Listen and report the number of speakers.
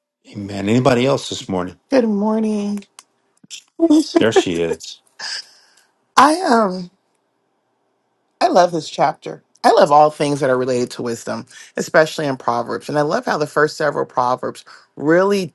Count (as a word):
two